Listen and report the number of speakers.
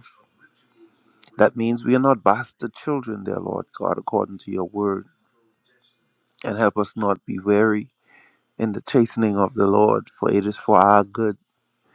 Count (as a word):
one